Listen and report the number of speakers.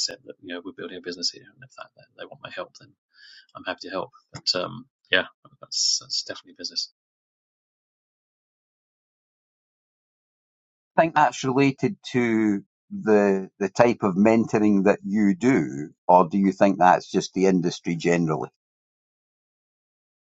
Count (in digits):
2